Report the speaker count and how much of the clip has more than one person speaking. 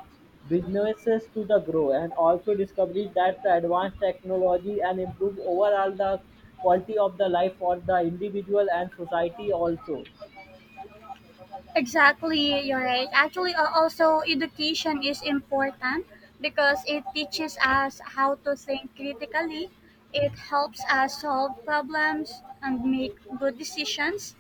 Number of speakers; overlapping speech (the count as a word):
two, no overlap